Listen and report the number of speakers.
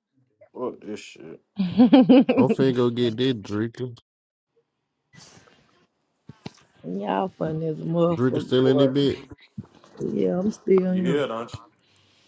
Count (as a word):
three